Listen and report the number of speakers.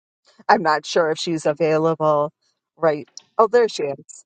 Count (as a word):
one